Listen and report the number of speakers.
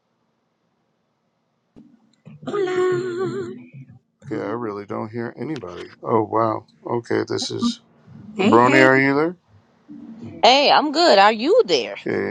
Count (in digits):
3